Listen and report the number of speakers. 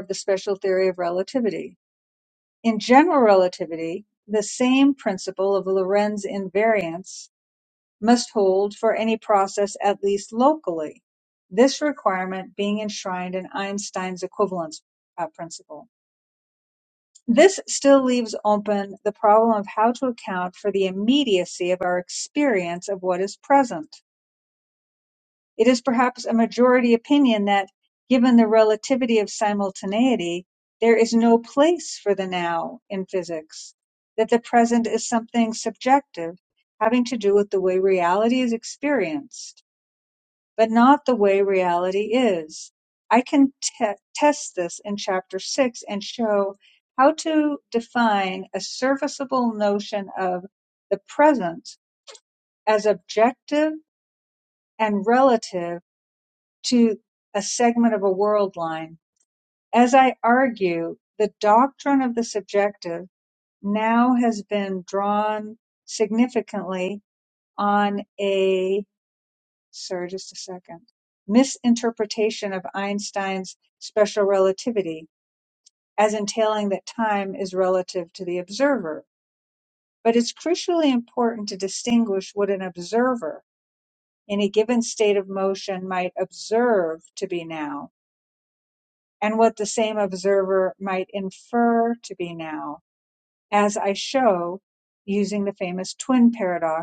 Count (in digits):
1